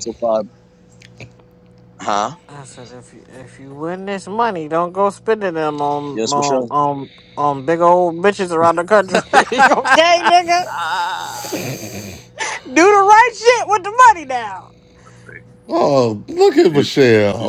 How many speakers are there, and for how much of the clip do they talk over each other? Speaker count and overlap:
4, about 5%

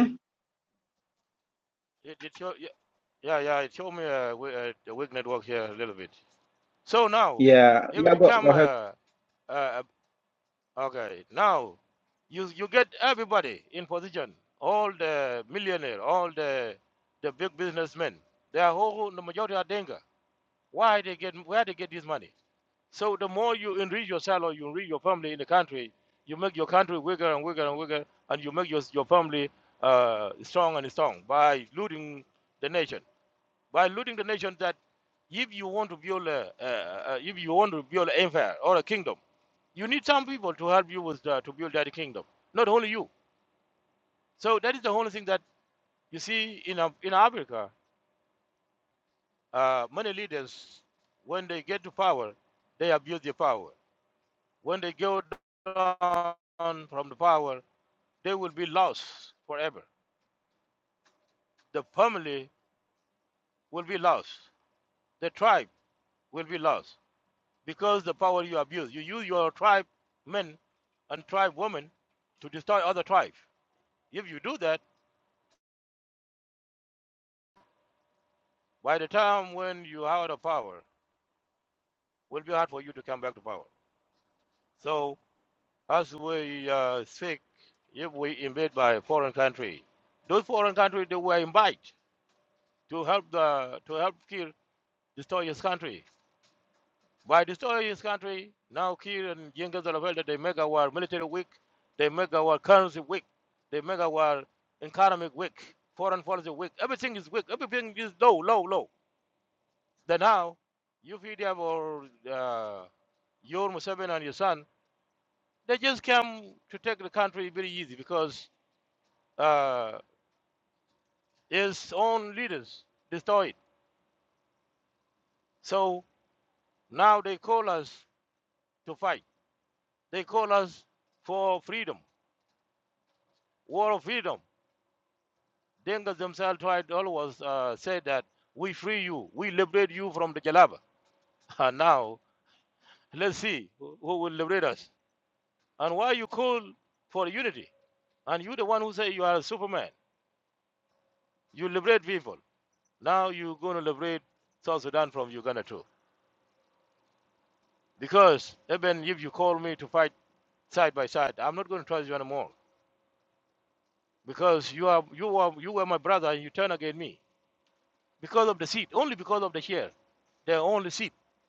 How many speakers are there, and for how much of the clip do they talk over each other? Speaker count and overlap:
2, under 1%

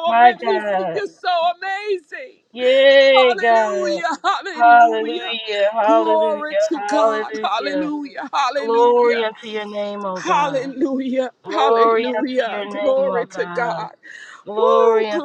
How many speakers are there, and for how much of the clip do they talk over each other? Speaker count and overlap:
2, about 57%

